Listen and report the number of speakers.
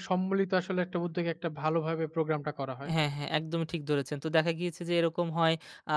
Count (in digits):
2